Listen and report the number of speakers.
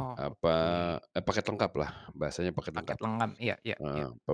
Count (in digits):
2